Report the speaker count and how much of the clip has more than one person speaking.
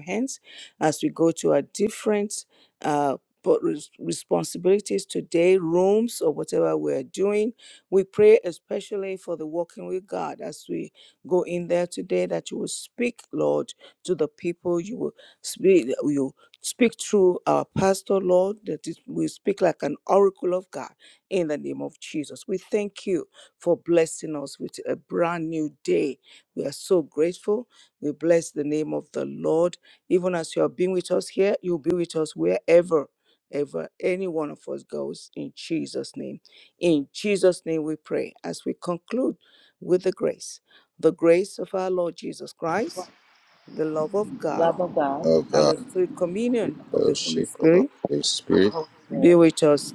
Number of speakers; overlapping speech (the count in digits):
3, about 4%